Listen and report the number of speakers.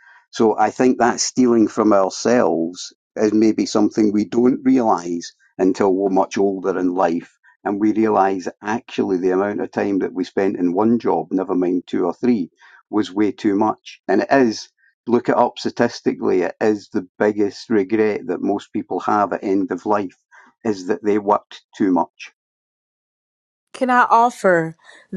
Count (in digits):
2